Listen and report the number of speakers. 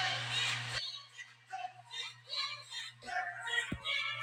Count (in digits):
0